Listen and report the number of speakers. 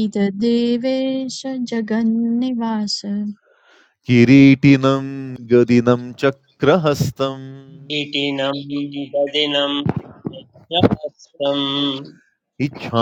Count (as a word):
three